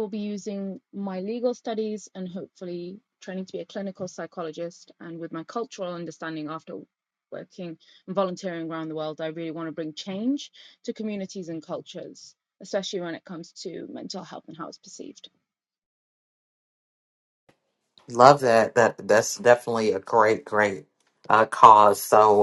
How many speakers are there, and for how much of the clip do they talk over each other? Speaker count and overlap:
2, no overlap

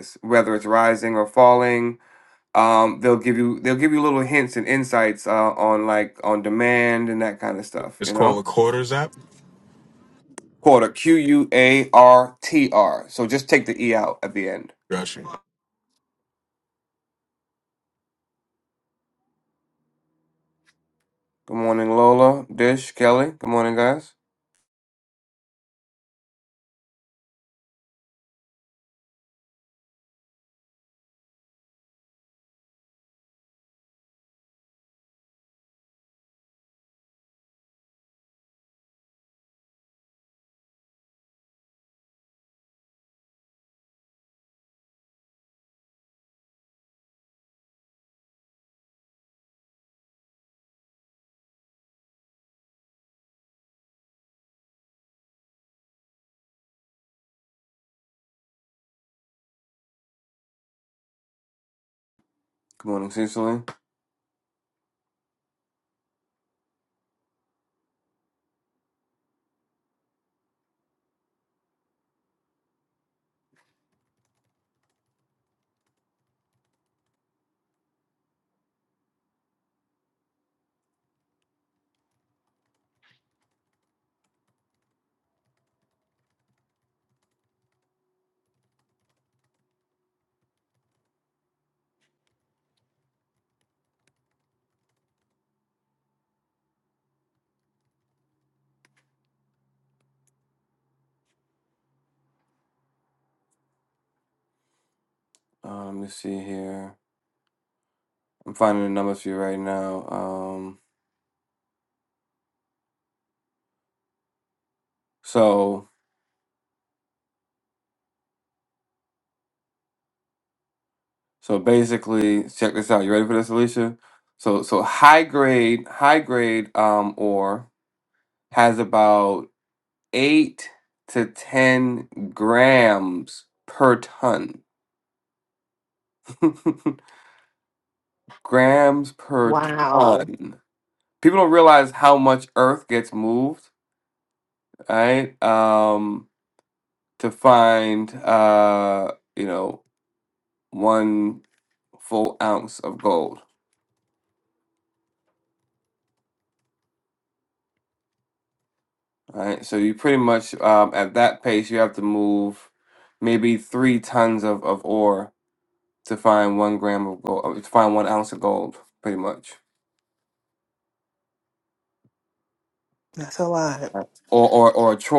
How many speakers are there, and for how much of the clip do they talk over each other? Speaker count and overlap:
3, about 1%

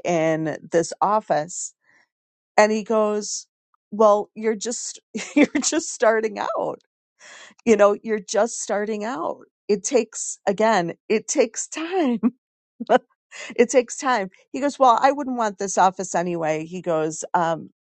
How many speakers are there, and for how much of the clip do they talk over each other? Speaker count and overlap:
1, no overlap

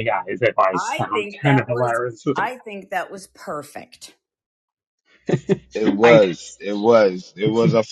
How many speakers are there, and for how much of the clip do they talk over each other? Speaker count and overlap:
3, about 19%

